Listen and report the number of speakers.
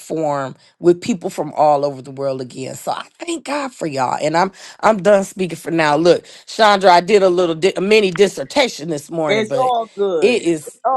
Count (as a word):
two